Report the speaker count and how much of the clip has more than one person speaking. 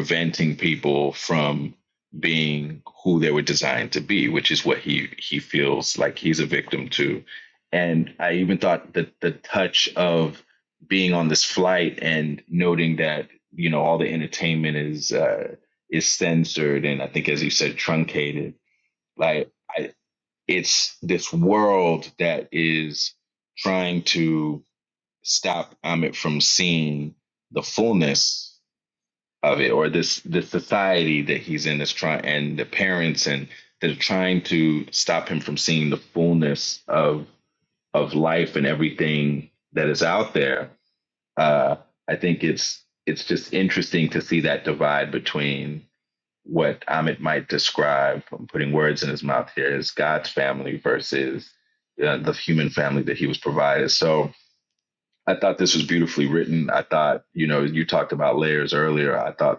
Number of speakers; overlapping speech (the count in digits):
1, no overlap